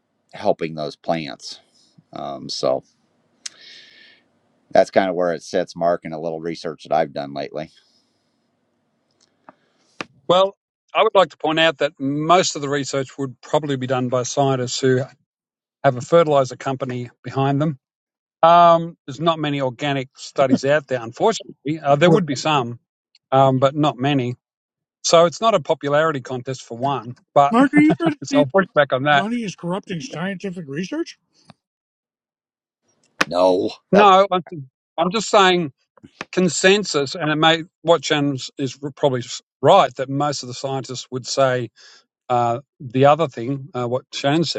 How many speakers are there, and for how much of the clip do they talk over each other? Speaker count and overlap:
3, about 1%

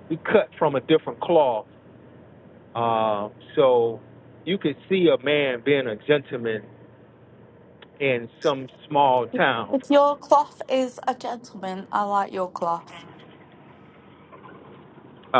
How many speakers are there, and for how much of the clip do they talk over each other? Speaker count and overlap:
2, under 1%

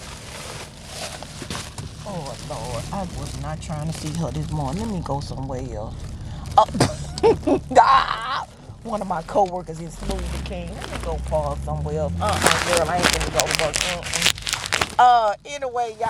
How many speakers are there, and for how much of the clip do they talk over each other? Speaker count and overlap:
1, no overlap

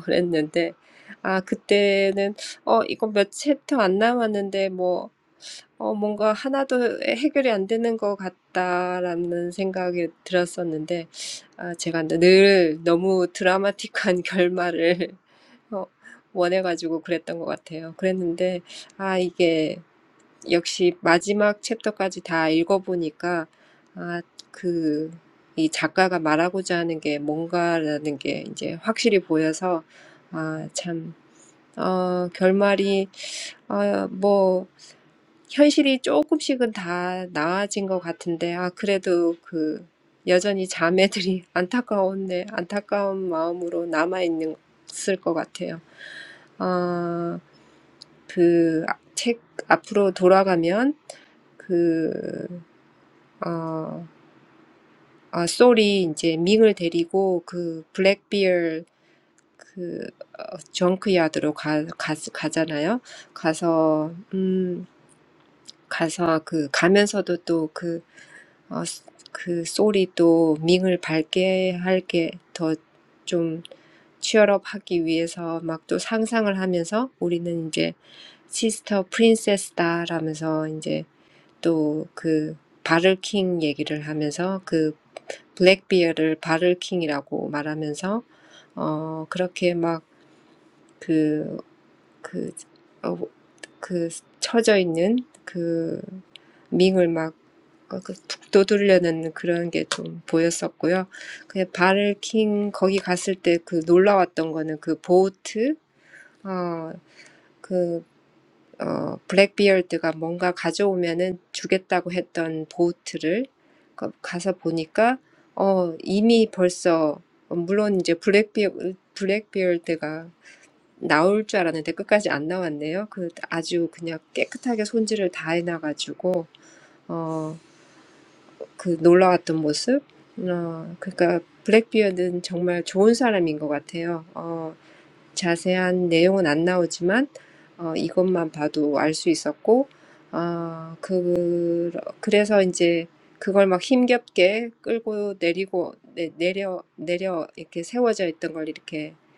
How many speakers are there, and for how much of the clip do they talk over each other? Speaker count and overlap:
1, no overlap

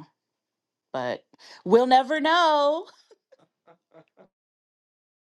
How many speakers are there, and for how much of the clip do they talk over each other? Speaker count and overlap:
1, no overlap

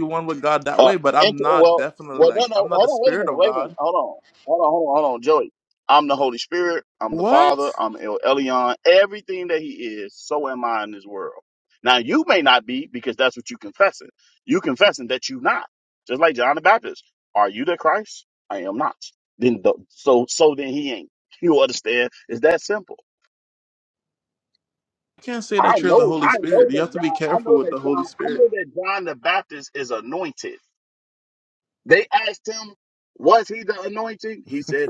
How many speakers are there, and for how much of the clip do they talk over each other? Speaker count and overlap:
2, about 17%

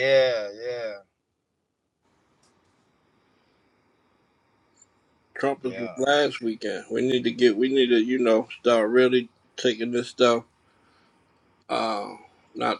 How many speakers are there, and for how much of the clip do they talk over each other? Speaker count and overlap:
2, about 3%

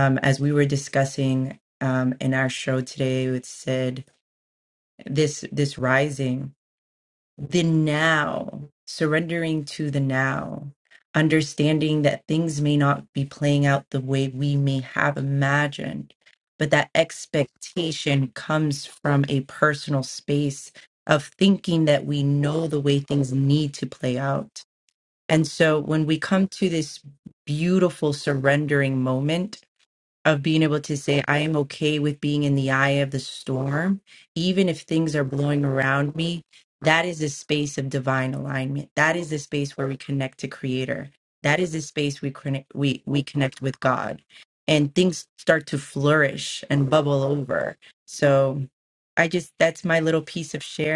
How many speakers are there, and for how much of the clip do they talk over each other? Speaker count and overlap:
1, no overlap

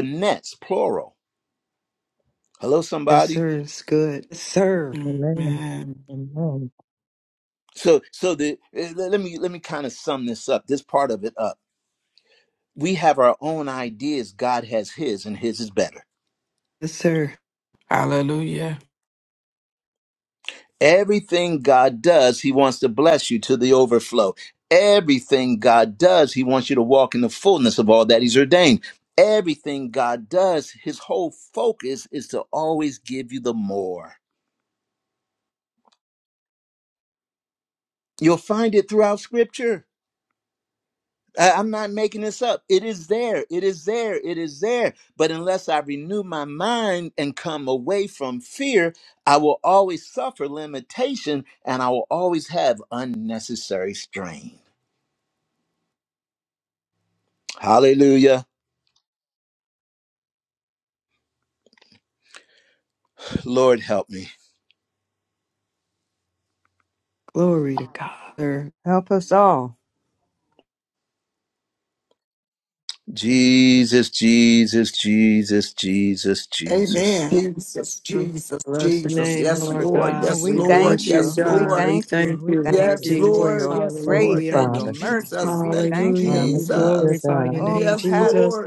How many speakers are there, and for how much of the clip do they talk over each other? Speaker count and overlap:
6, about 13%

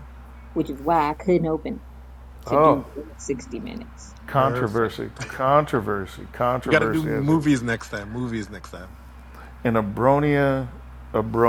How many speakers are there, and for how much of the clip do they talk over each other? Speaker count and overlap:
3, about 14%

